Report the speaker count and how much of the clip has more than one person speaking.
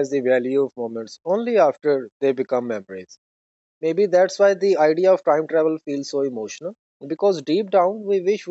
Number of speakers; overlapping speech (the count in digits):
1, no overlap